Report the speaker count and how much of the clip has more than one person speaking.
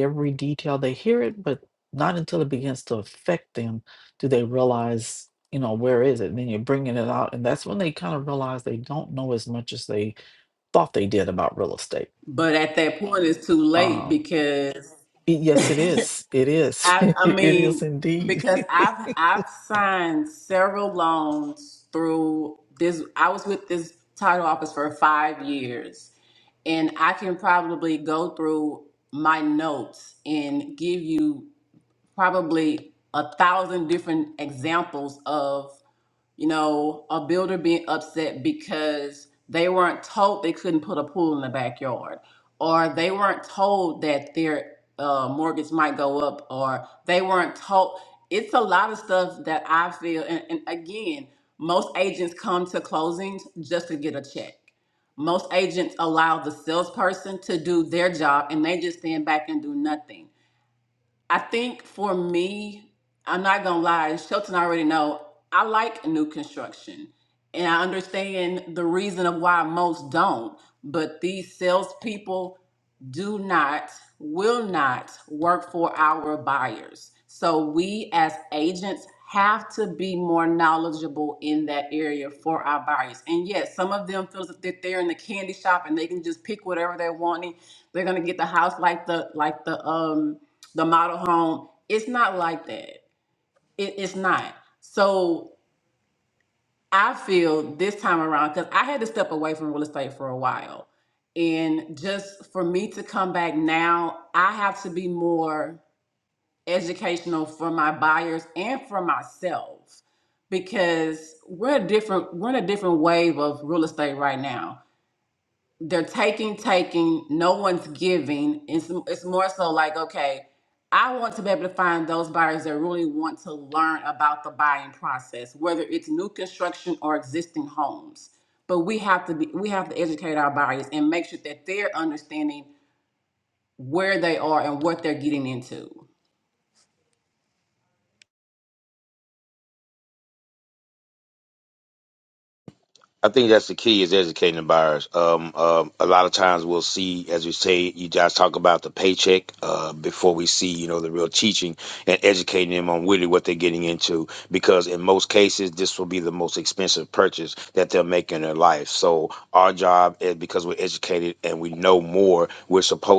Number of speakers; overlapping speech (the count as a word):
three, about 1%